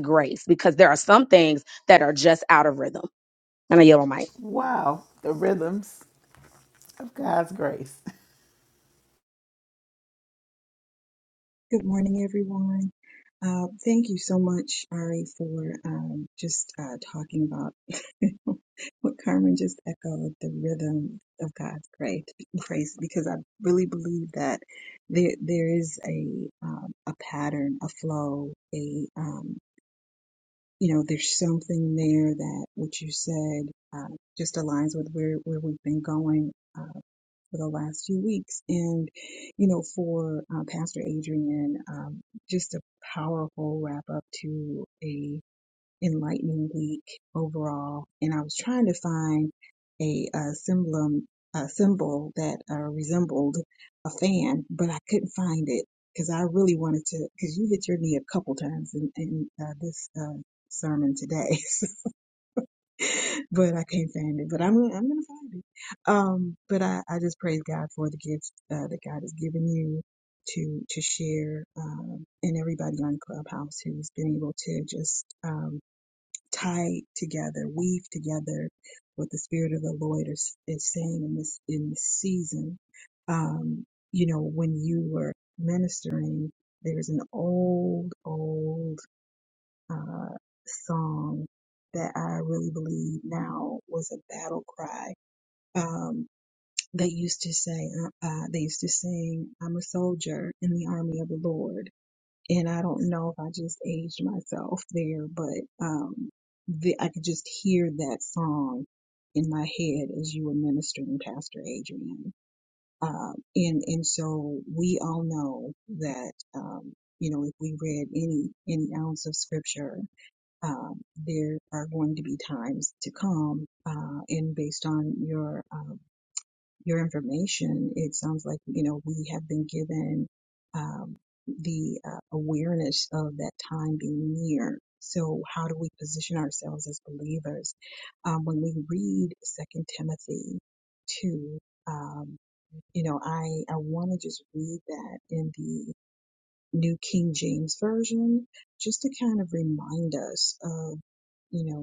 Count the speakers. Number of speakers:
three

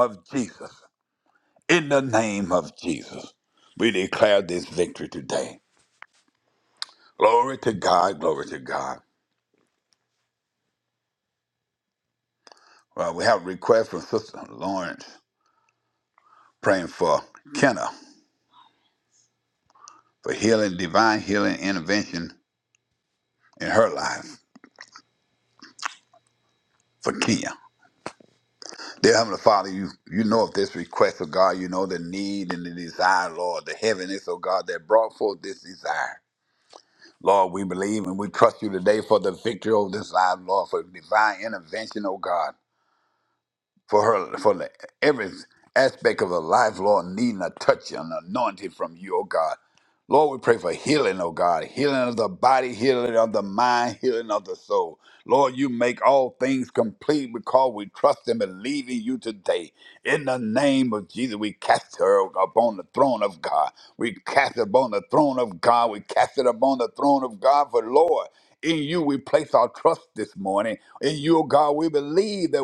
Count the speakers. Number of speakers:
one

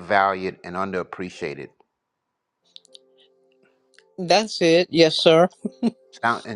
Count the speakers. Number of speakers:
two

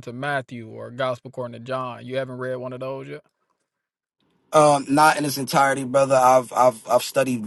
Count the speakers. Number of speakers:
two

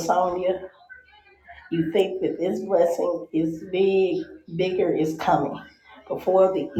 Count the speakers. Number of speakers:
one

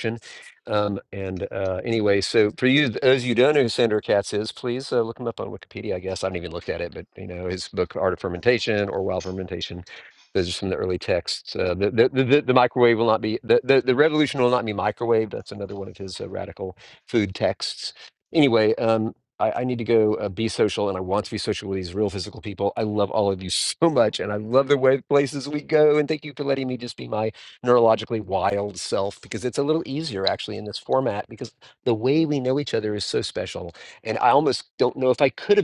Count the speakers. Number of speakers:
one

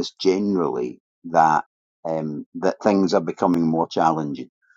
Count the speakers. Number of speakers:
one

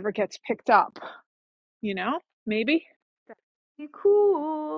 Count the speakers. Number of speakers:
two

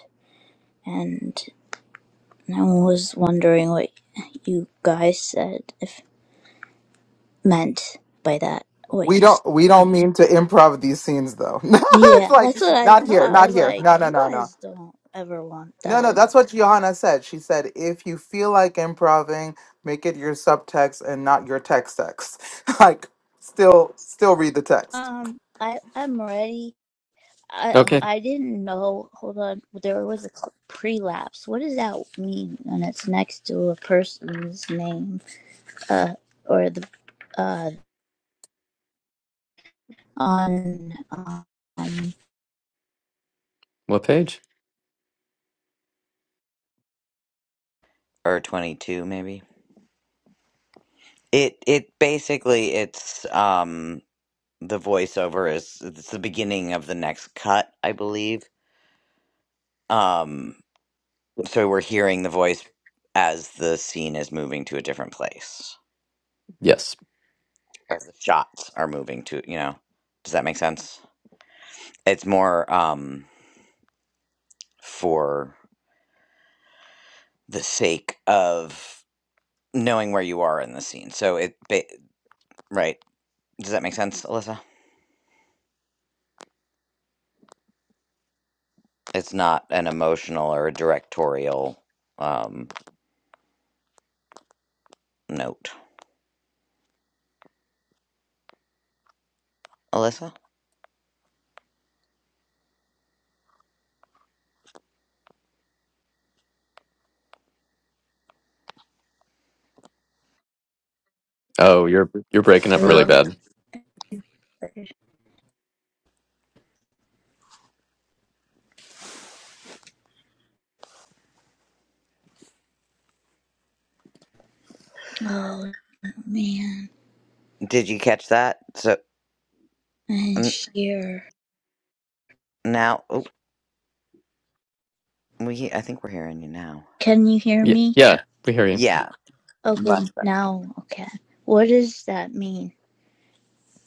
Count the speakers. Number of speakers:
four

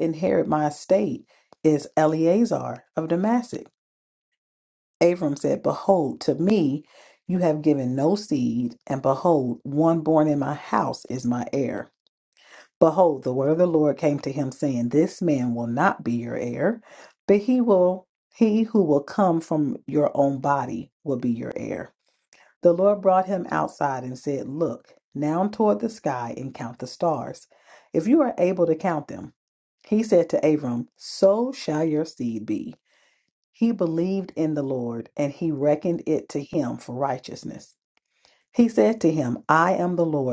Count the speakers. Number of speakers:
one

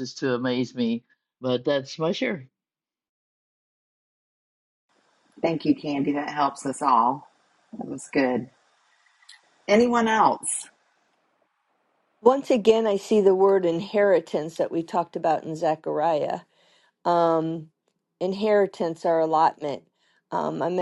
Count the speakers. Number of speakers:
three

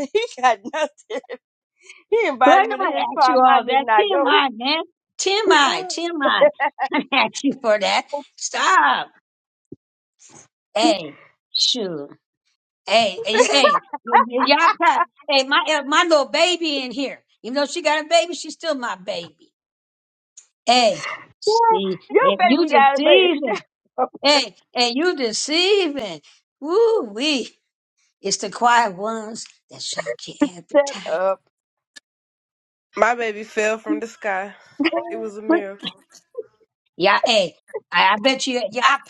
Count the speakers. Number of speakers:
three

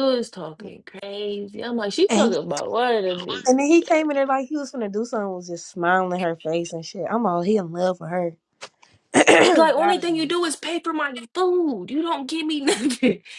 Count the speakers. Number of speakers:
two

